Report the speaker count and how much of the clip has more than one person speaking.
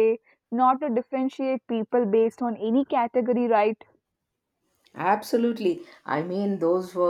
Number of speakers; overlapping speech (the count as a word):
two, no overlap